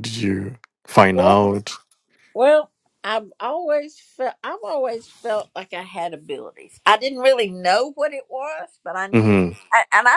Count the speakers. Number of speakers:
two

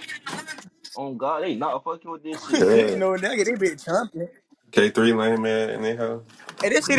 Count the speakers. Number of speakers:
three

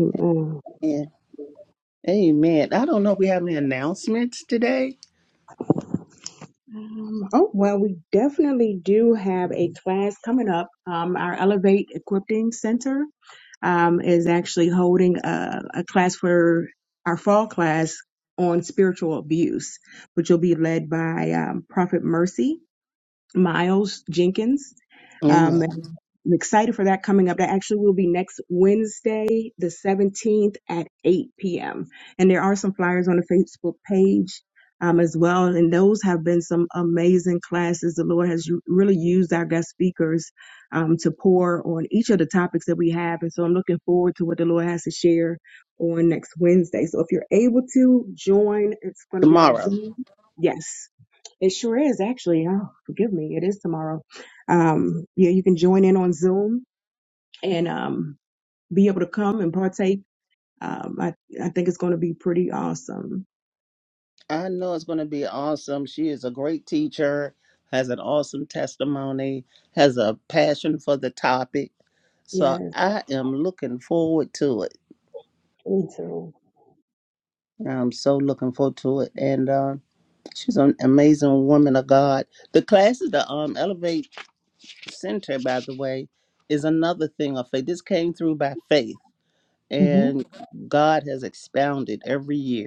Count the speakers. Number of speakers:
two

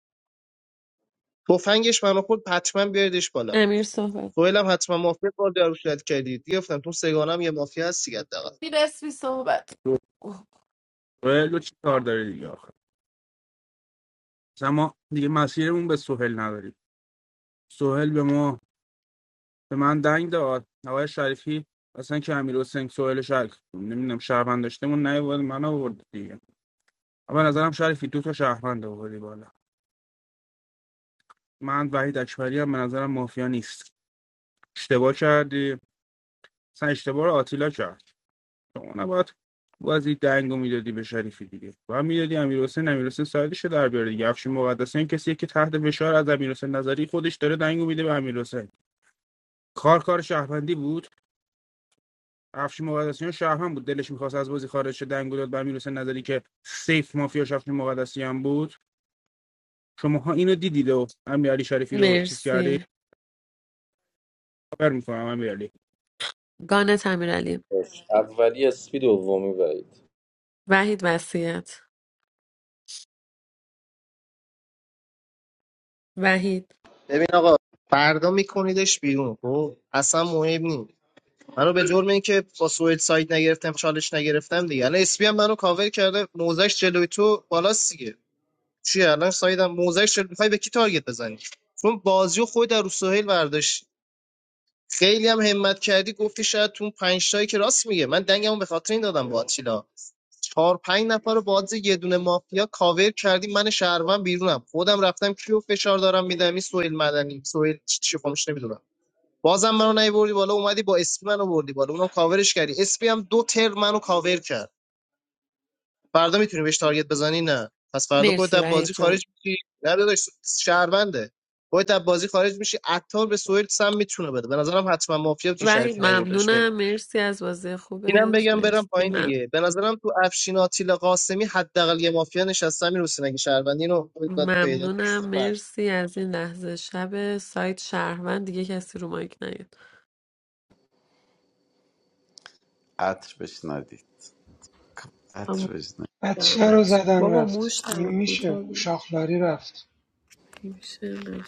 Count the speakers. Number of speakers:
six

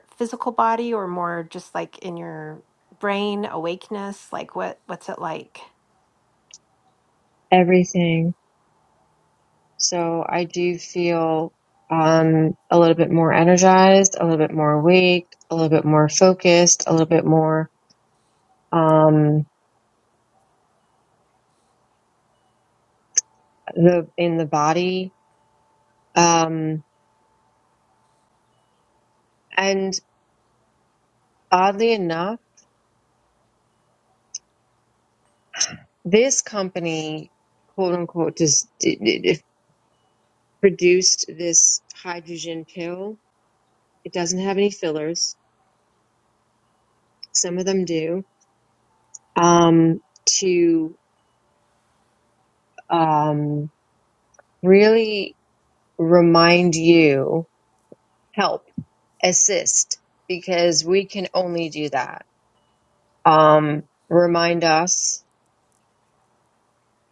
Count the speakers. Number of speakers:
two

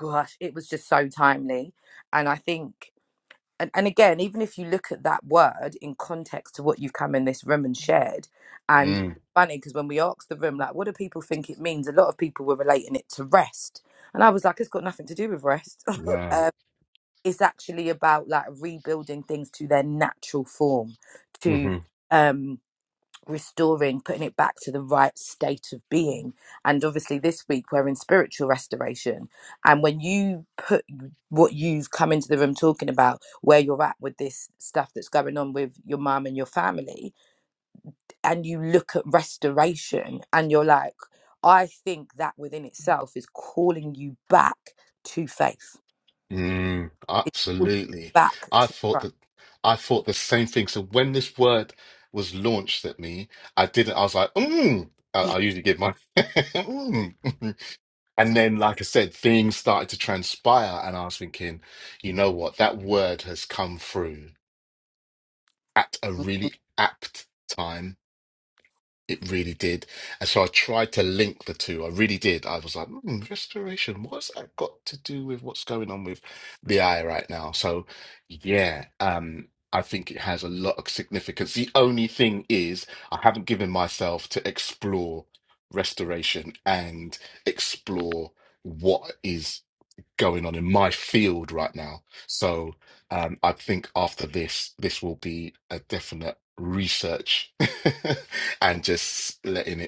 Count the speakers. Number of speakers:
two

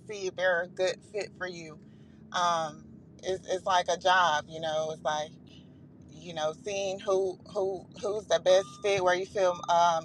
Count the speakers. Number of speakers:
one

